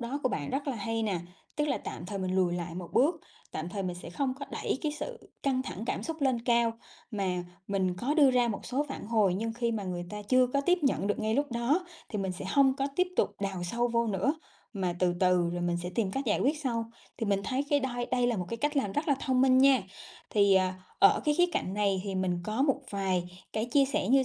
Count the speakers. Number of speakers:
one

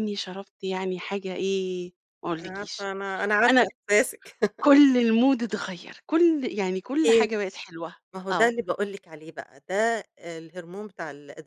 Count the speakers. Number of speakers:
two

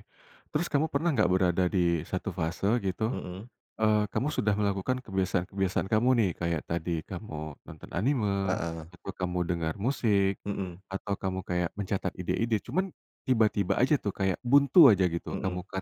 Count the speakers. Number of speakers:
two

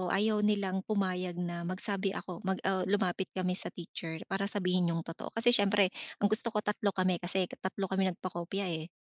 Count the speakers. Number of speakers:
one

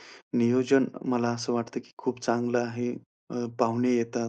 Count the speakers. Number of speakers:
one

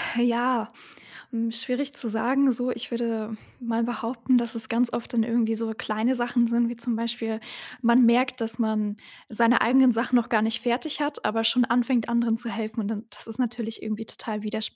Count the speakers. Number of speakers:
one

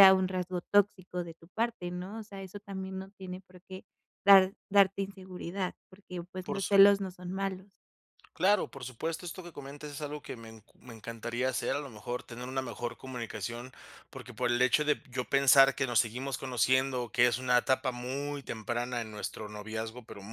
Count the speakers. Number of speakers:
two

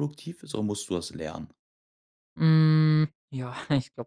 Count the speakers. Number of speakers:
two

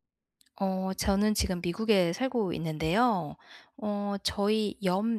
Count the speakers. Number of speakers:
one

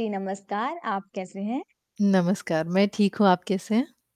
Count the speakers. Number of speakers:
two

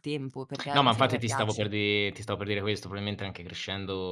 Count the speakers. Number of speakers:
two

